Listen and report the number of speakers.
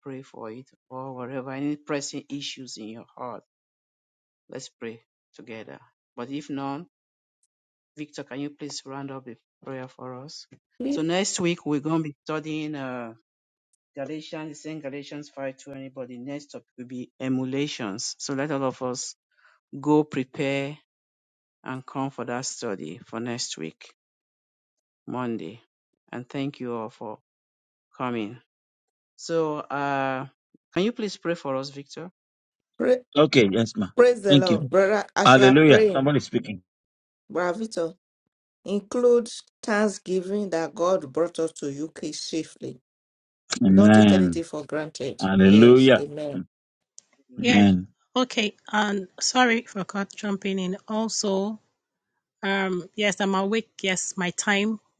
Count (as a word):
four